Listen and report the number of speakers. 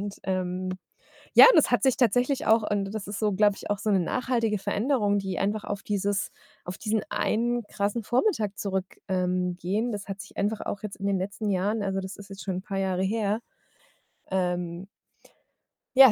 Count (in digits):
1